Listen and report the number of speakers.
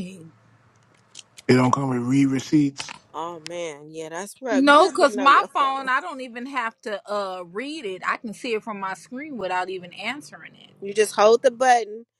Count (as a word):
three